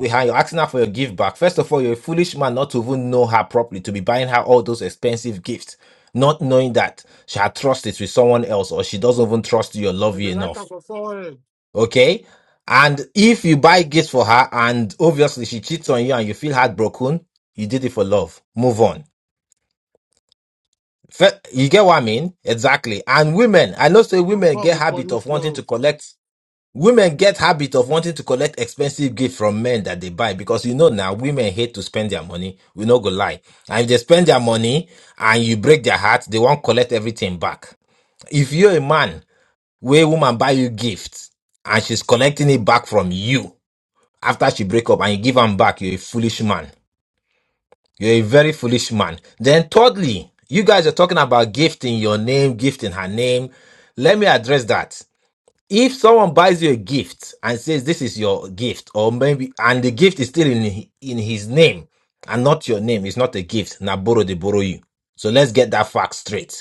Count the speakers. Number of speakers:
2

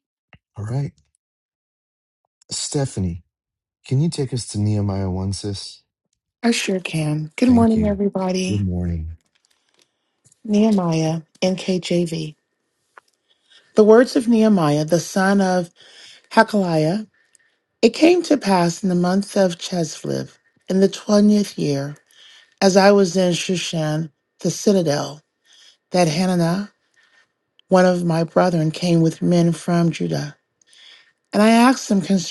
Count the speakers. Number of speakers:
2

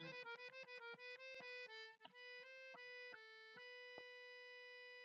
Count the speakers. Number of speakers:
0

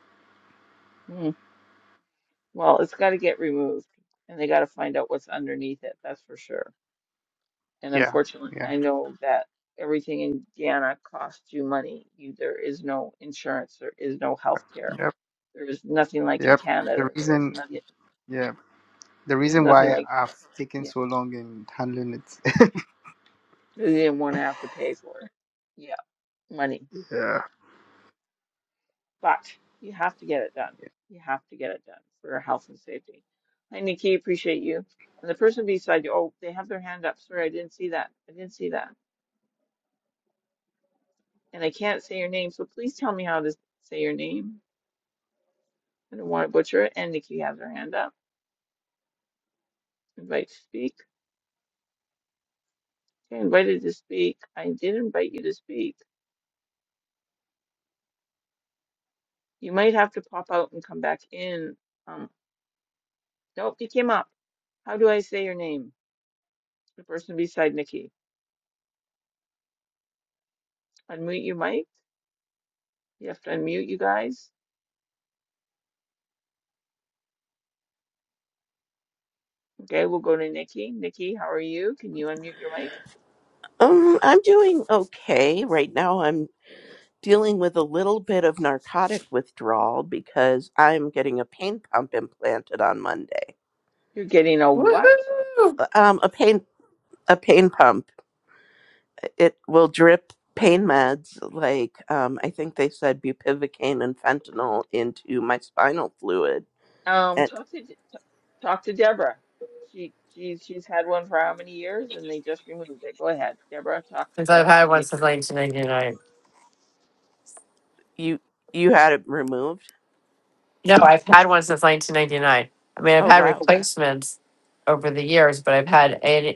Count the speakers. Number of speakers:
4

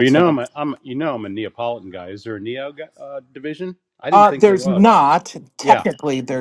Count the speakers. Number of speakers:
2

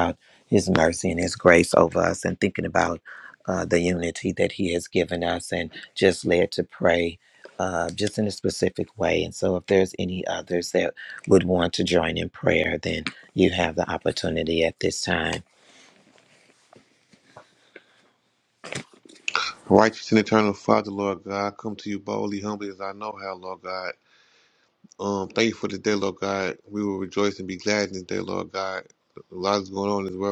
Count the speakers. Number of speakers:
2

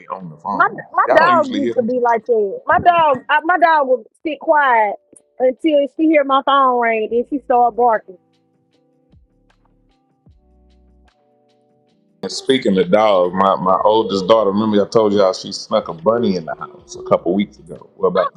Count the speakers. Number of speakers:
2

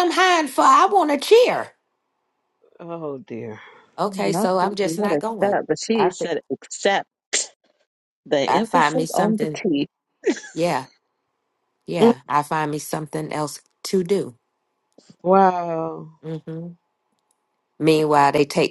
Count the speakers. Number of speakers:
3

